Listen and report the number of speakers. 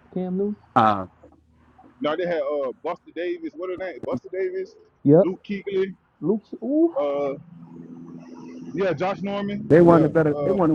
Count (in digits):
3